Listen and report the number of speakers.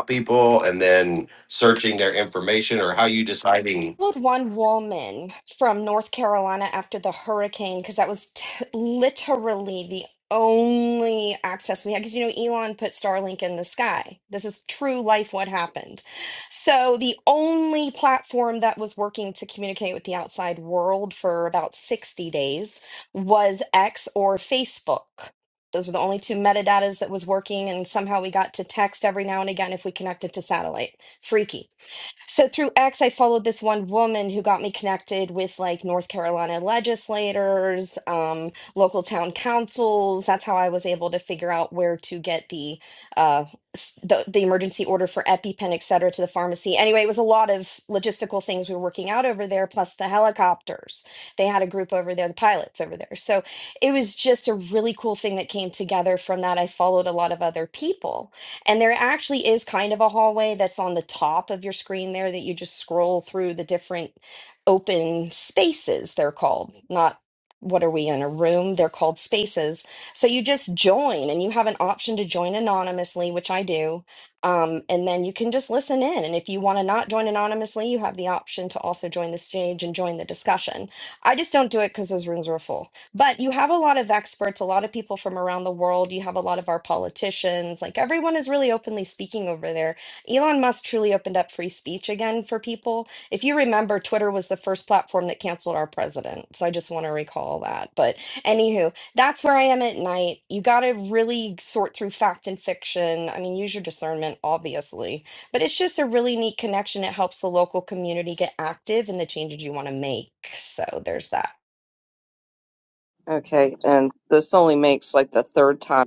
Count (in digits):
3